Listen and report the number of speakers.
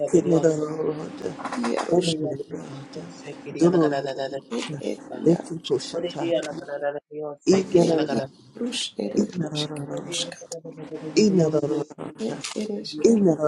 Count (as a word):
three